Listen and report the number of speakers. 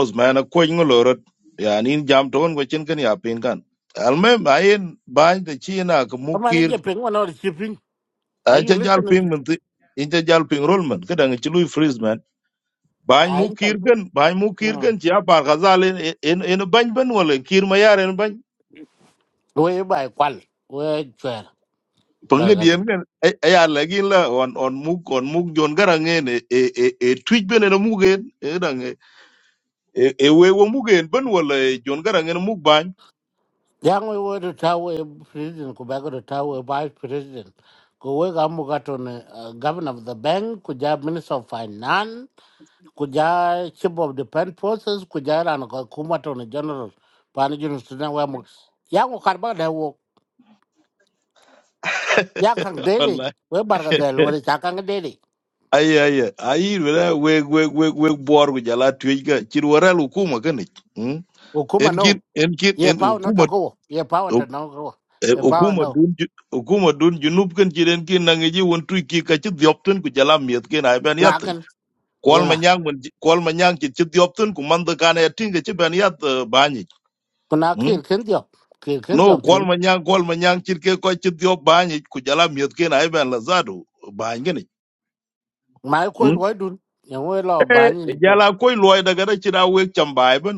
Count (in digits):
2